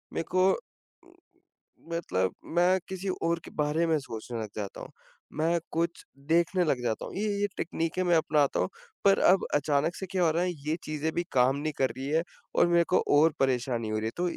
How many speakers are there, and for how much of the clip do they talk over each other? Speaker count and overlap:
one, no overlap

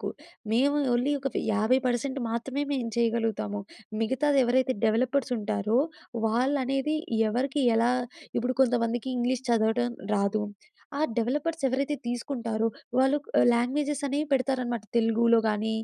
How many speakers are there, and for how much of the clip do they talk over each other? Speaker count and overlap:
one, no overlap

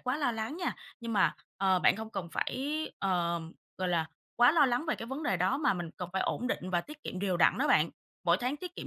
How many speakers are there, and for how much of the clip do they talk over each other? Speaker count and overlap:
one, no overlap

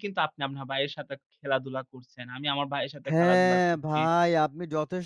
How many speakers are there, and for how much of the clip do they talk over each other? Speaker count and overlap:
two, about 19%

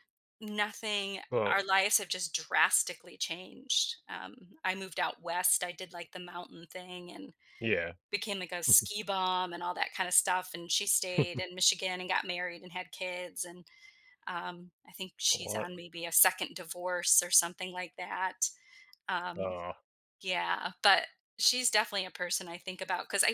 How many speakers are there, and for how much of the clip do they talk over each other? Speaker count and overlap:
two, about 3%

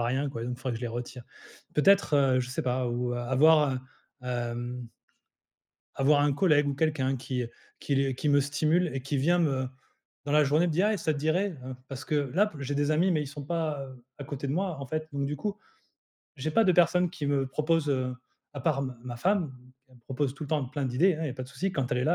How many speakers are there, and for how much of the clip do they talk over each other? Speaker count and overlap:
one, no overlap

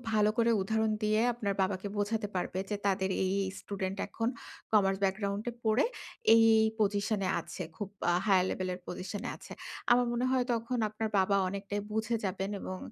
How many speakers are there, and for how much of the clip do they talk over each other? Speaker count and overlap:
one, no overlap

